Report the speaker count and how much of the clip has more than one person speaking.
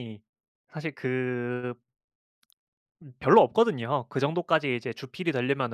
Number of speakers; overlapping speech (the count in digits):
1, no overlap